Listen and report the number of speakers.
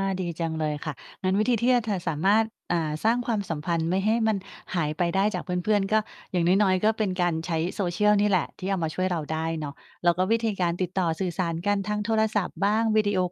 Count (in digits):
1